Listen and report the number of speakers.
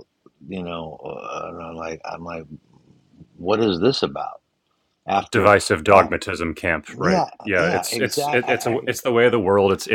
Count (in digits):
2